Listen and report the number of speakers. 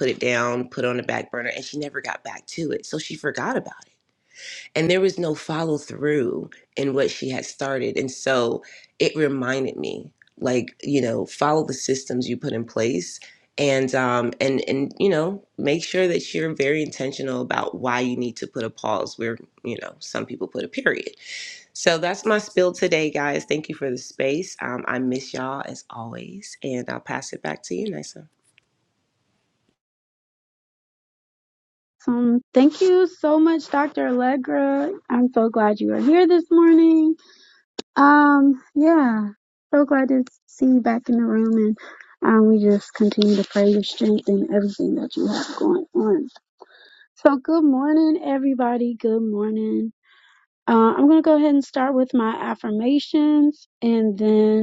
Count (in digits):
2